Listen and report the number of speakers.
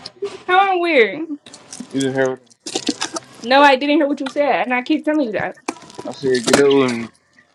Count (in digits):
2